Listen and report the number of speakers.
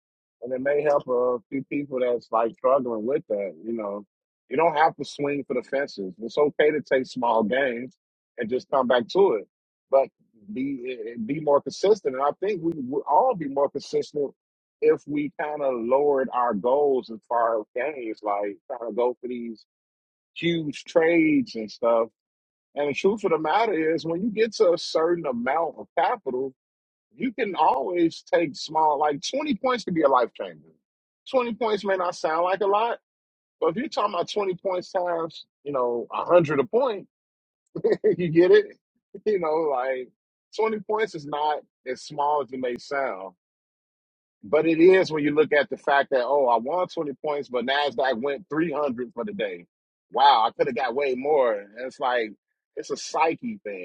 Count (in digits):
1